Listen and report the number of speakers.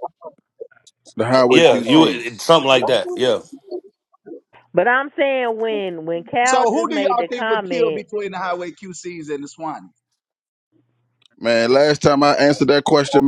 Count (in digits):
4